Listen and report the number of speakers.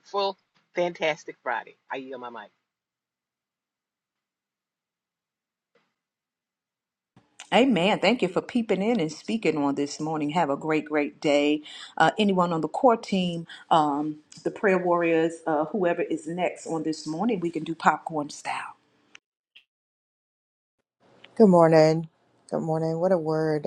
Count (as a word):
three